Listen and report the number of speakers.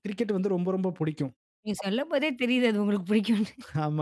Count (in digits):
2